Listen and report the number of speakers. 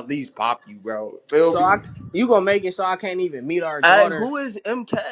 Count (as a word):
three